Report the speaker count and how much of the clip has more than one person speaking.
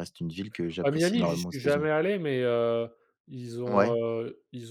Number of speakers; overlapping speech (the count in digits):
2, about 27%